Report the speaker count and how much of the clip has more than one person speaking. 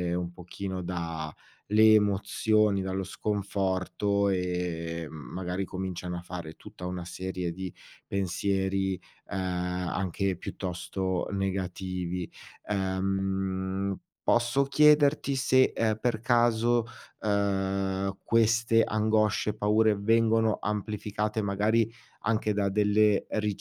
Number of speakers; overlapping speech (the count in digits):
1, no overlap